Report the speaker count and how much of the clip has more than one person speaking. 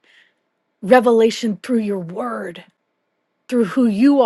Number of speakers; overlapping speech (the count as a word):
one, no overlap